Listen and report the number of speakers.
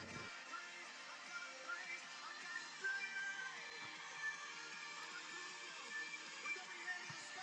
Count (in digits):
0